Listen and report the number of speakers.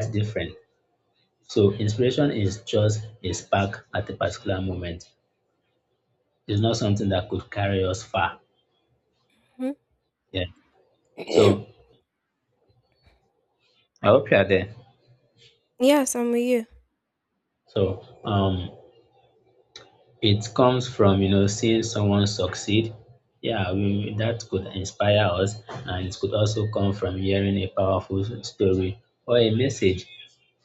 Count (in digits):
2